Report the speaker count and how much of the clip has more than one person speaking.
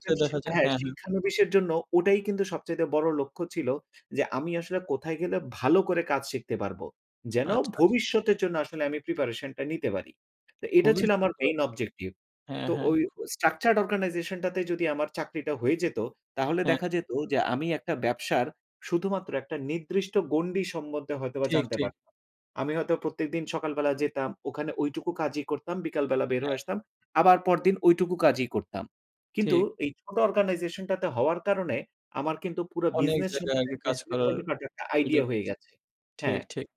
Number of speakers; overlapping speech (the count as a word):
two, about 12%